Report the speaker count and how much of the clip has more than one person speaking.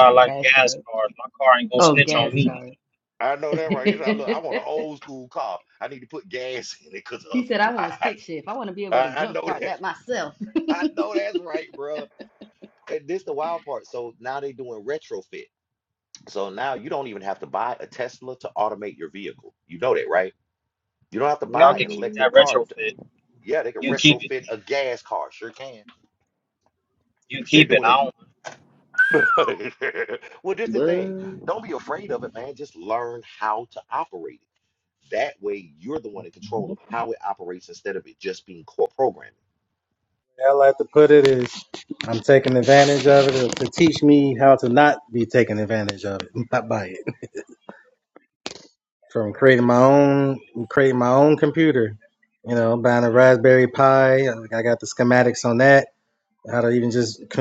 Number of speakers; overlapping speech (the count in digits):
4, about 9%